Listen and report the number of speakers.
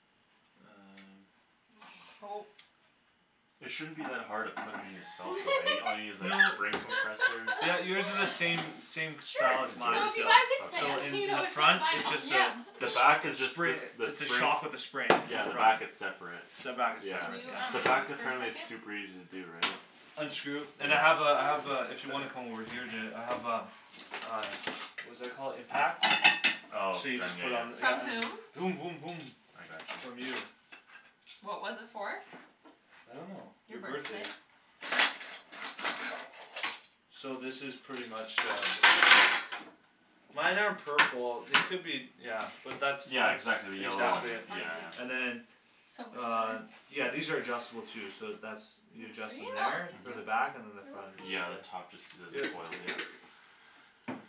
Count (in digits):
4